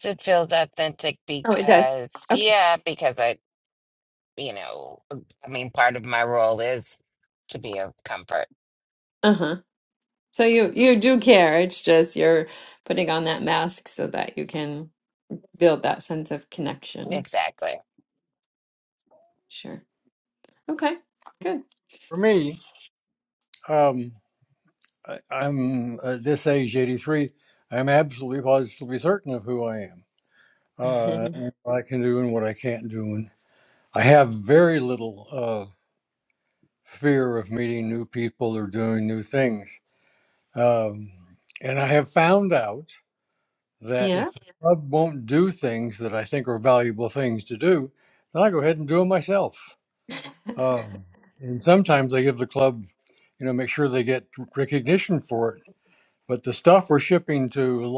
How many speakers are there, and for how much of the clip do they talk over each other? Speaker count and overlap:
3, about 2%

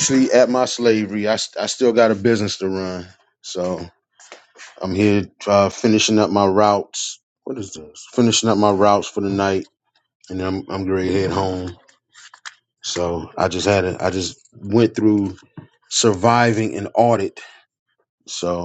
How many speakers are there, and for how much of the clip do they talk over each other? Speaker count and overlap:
1, no overlap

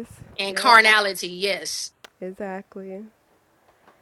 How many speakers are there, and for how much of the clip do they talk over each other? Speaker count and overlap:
2, about 6%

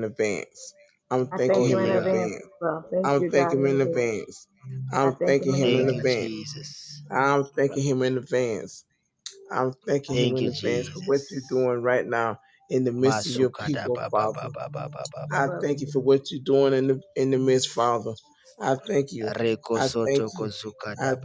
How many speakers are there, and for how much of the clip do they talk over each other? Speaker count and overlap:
3, about 36%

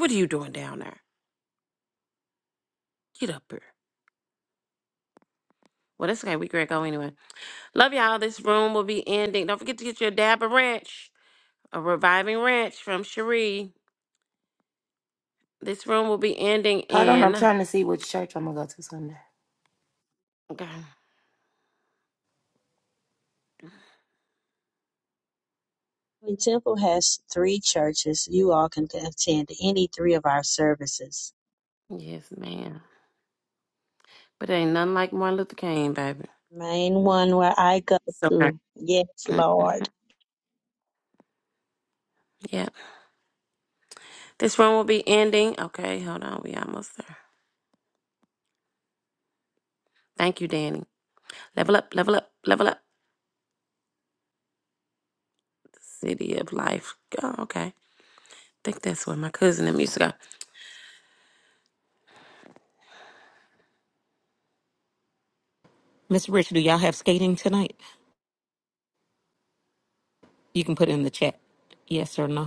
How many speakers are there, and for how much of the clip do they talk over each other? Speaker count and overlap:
4, about 1%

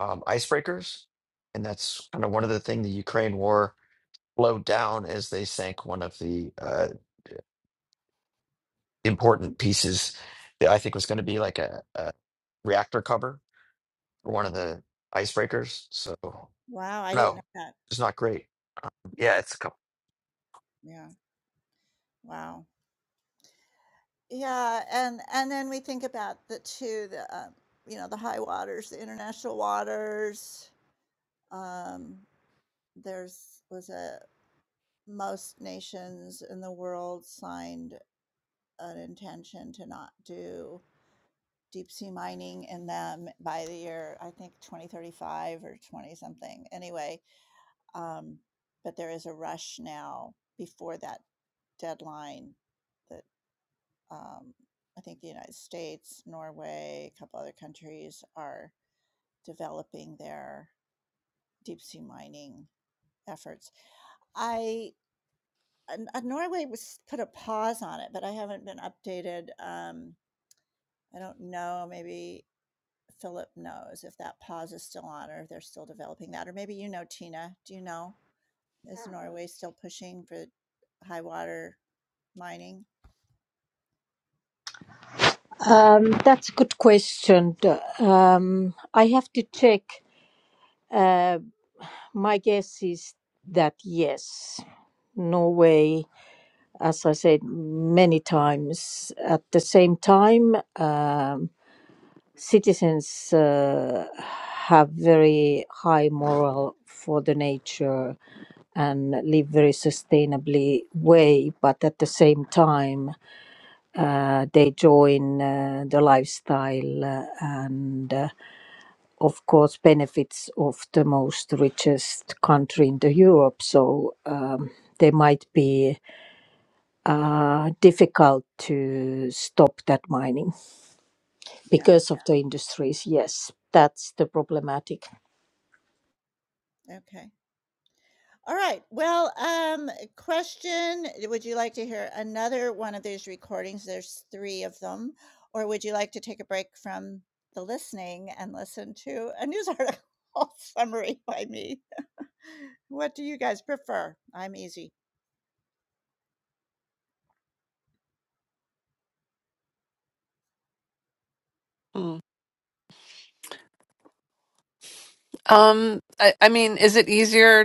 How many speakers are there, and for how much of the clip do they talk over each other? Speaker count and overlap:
4, under 1%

